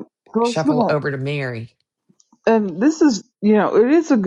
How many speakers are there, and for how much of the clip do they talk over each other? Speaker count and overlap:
2, about 10%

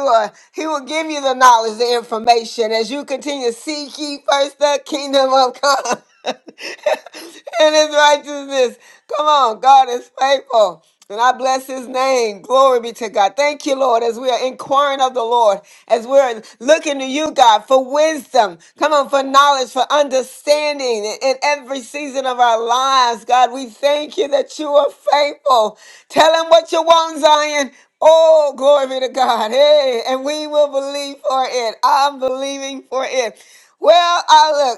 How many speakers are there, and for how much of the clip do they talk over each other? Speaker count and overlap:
1, no overlap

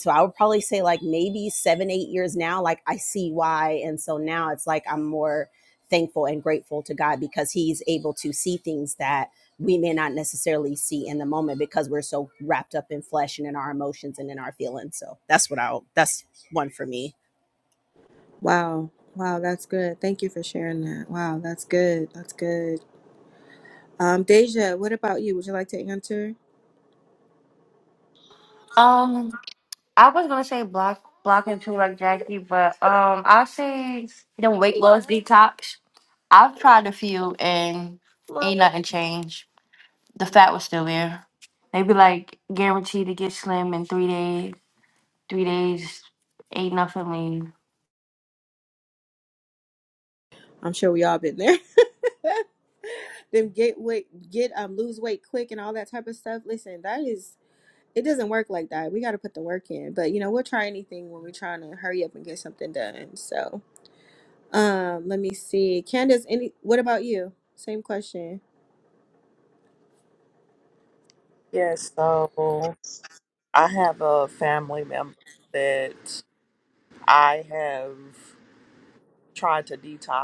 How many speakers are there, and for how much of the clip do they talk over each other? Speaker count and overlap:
4, no overlap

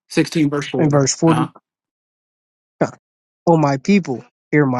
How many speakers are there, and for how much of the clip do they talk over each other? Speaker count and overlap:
2, about 14%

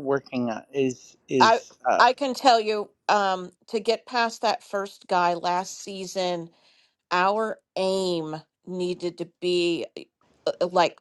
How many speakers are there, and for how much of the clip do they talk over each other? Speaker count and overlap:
2, about 2%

